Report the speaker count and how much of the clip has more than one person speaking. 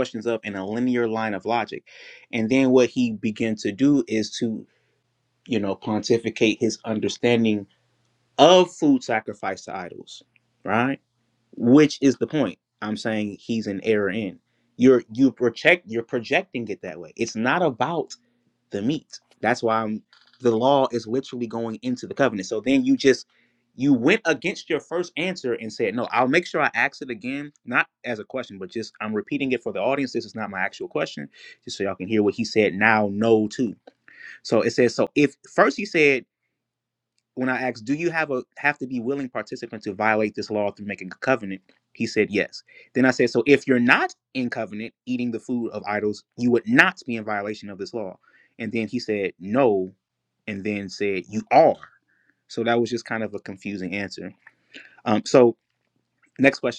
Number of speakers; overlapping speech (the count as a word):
one, no overlap